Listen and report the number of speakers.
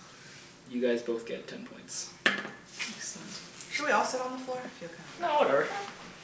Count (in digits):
2